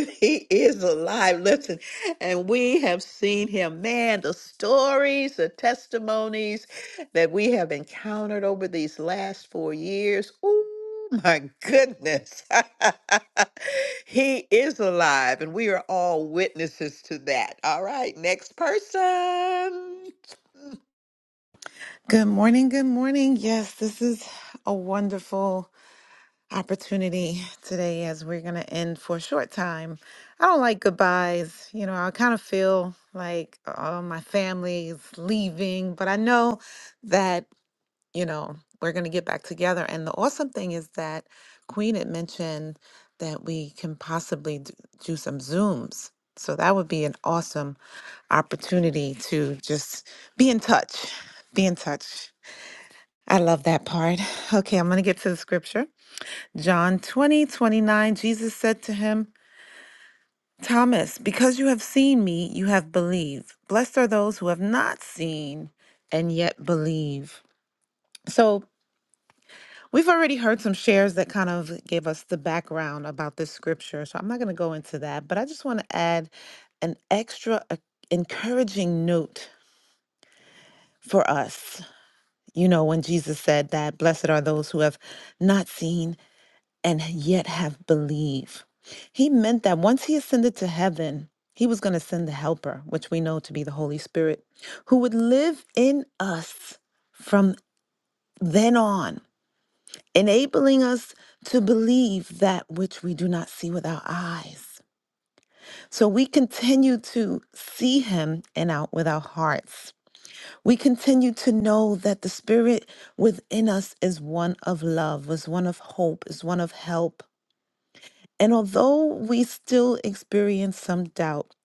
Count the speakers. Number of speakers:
2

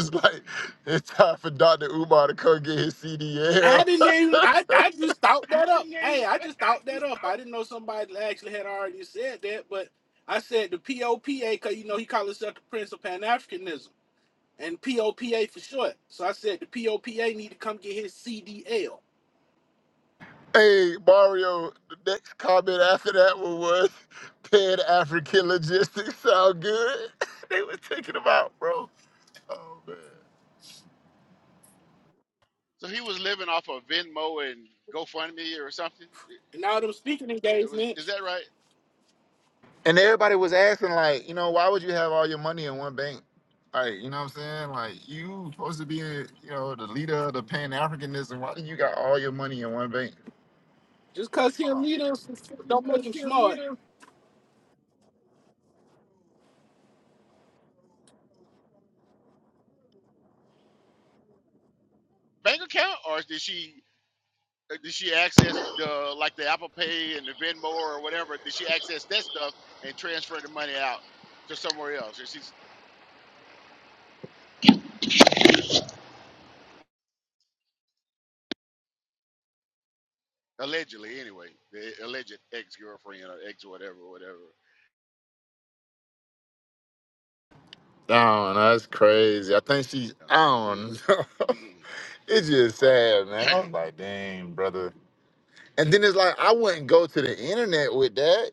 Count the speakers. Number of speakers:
3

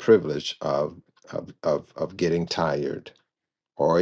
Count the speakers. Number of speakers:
1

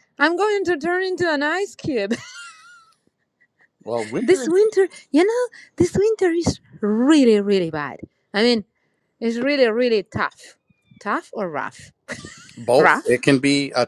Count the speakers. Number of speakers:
2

